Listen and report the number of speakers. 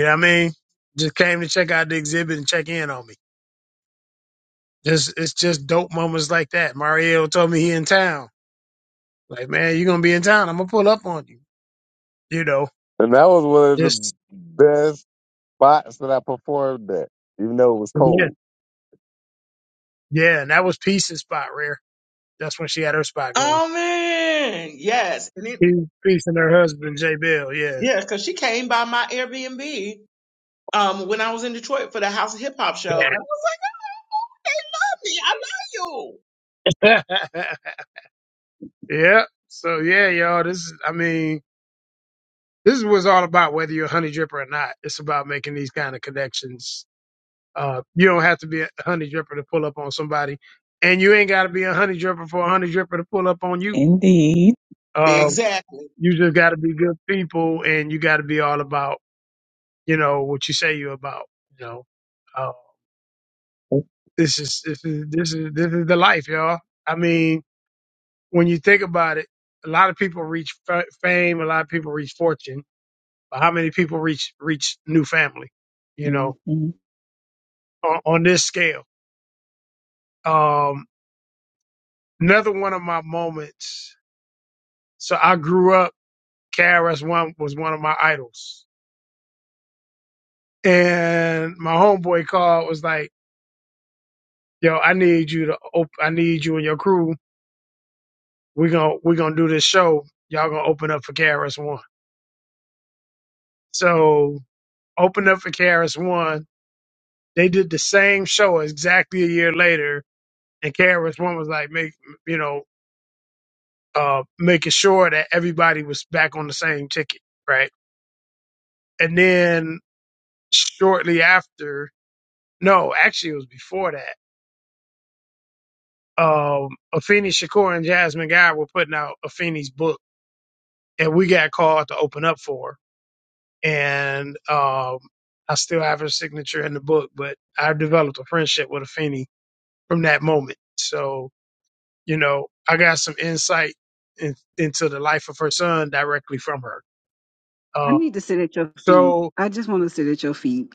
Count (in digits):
5